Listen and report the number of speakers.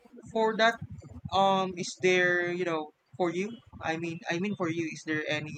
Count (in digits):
1